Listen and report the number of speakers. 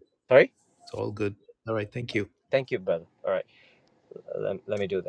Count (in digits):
2